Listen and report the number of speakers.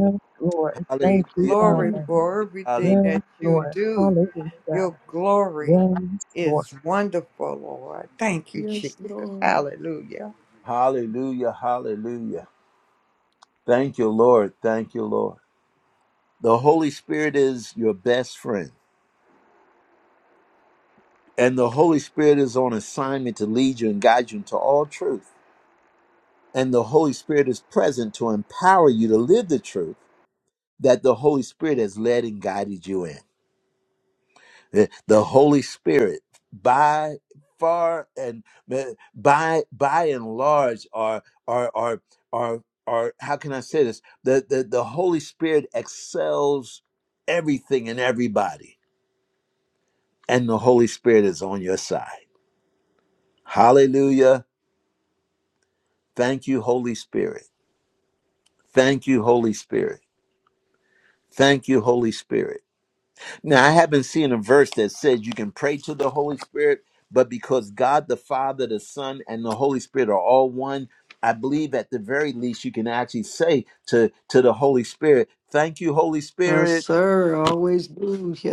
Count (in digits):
4